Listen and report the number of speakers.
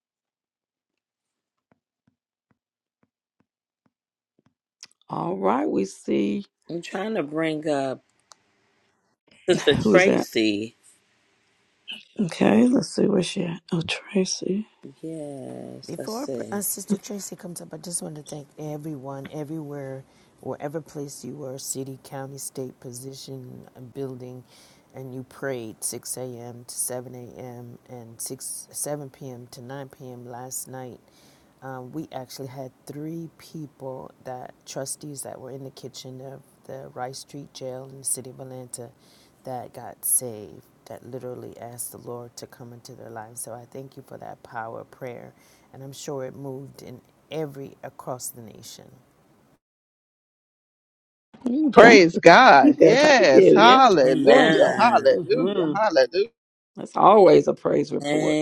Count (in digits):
4